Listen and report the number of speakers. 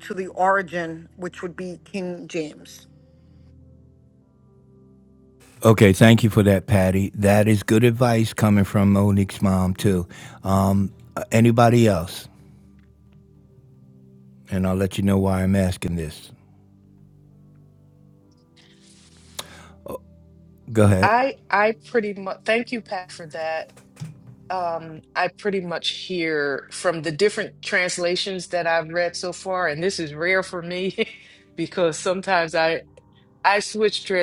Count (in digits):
3